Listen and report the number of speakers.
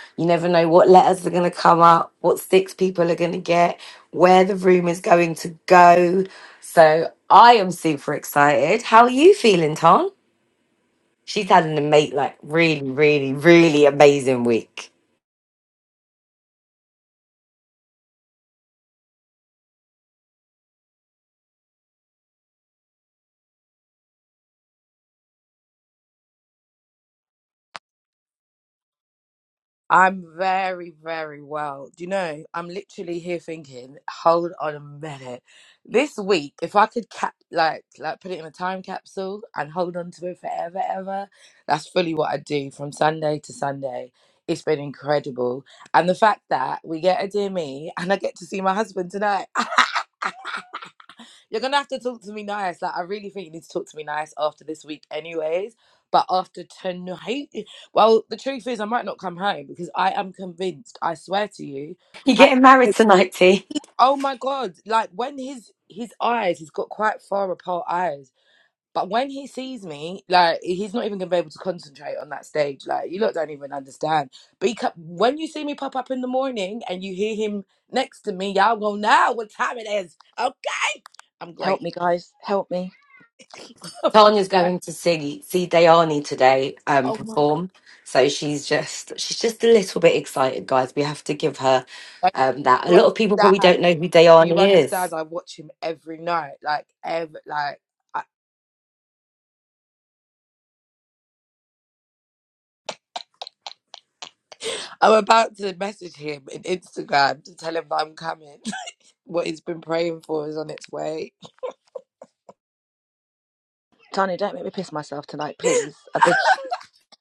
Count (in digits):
3